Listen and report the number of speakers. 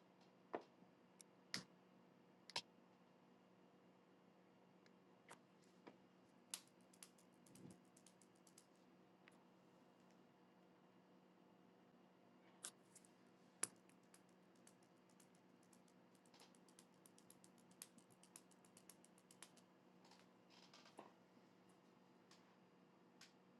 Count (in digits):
0